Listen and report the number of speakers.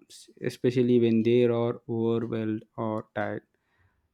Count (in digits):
1